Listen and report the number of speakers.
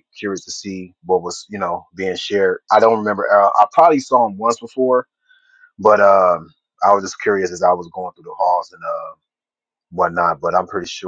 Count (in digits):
1